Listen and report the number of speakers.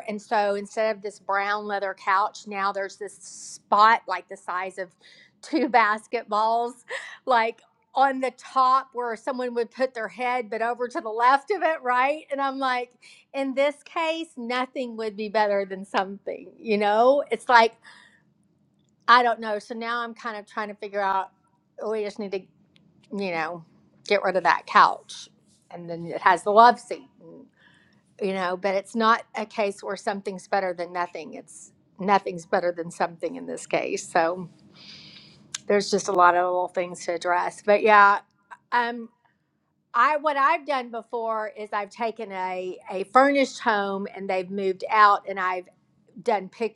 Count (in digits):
1